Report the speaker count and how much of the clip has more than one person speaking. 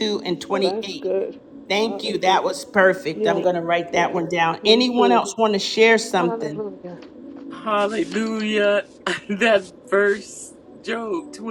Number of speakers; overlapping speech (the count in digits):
3, about 29%